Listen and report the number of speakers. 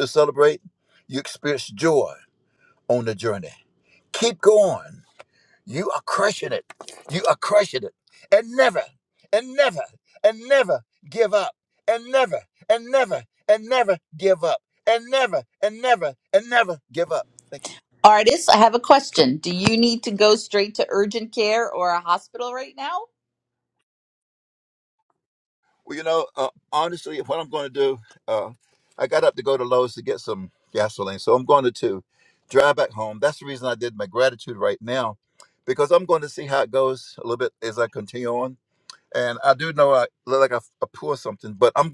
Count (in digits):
2